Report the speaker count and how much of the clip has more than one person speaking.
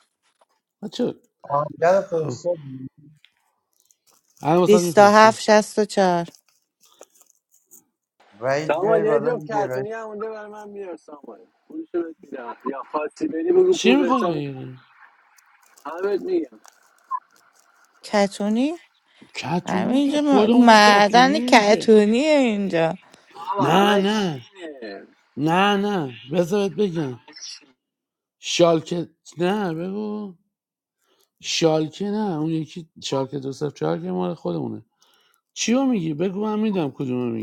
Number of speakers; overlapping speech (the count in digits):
4, about 16%